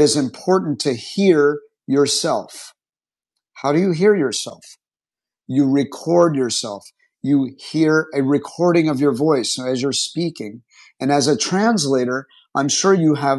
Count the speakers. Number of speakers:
1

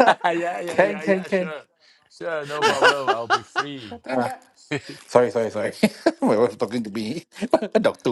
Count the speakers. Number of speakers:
2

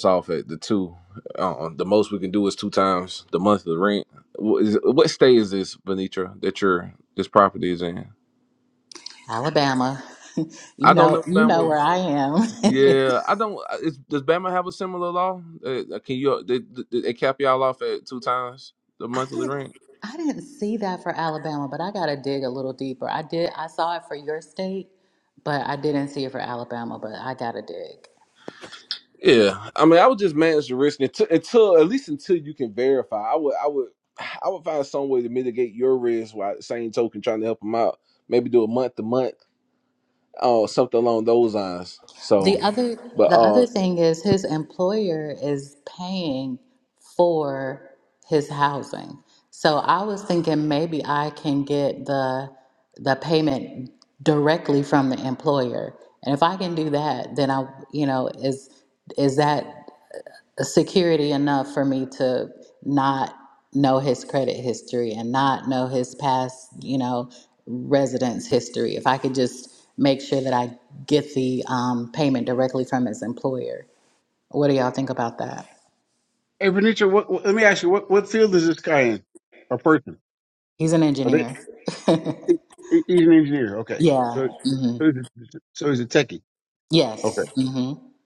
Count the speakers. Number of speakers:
3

